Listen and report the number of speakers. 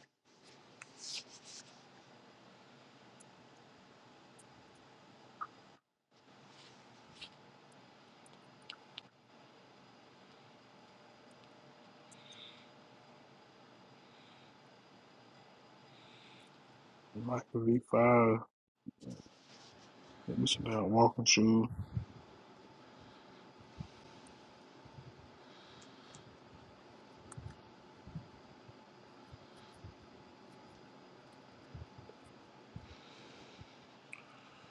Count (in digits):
1